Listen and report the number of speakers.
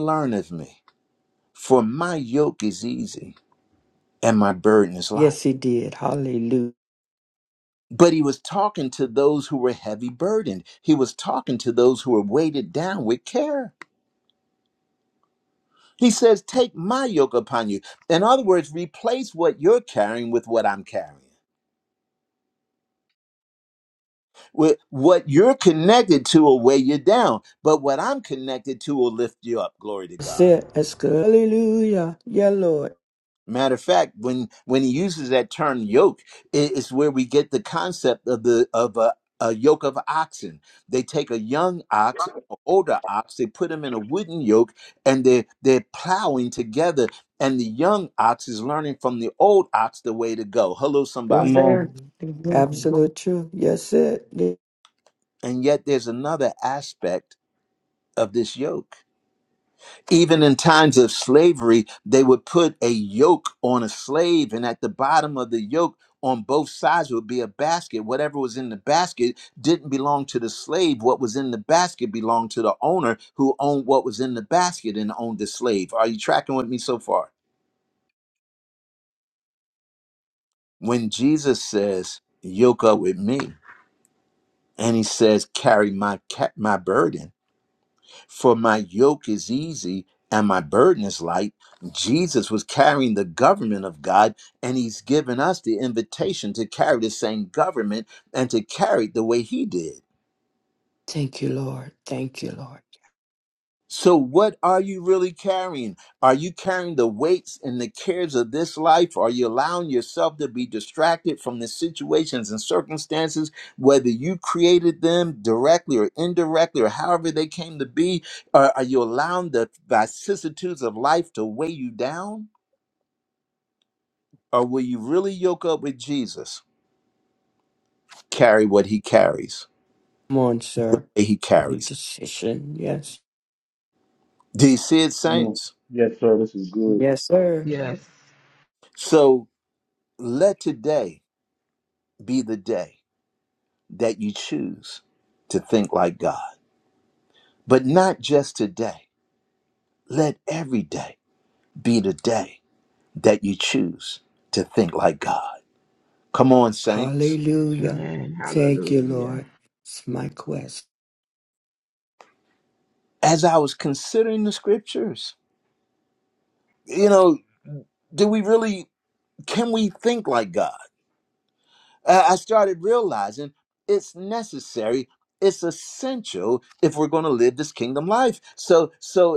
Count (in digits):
5